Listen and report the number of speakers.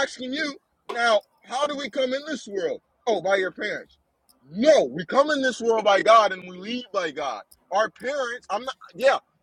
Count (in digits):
1